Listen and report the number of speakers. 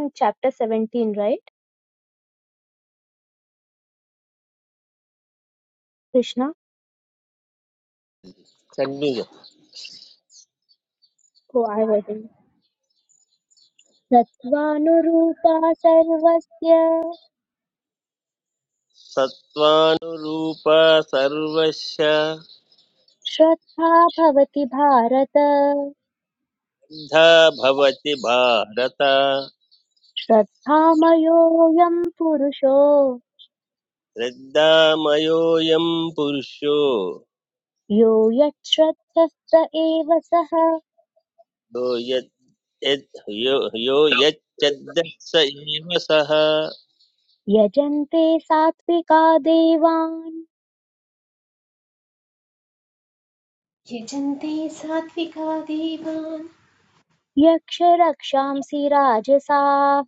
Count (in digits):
3